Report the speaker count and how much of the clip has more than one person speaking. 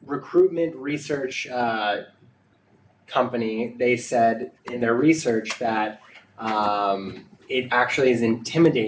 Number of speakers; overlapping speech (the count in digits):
1, no overlap